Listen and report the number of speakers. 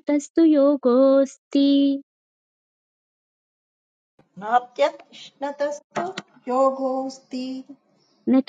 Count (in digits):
2